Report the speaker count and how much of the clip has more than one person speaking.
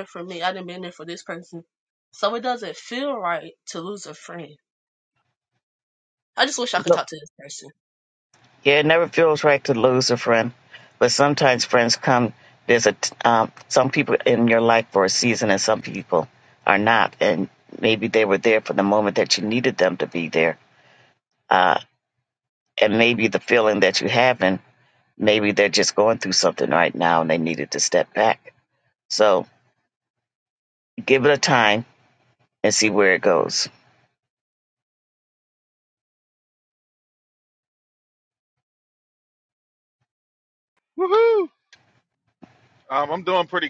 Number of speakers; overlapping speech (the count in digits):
3, no overlap